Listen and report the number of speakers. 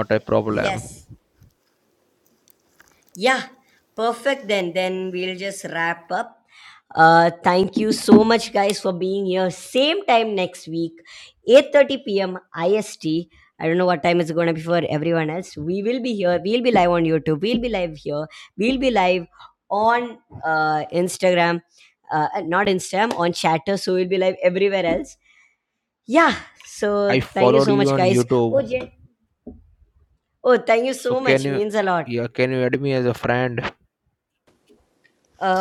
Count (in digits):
2